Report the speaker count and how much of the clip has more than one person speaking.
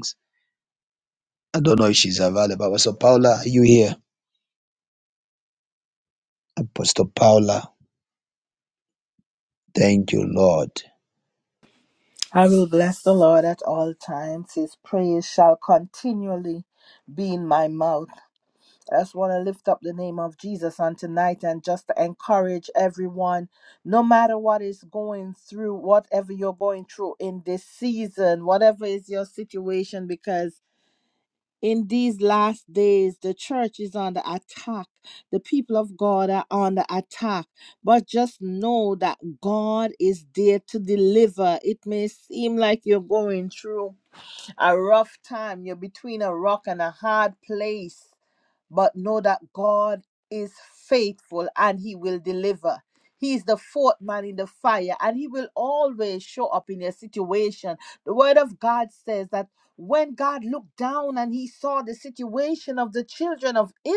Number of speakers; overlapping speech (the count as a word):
two, no overlap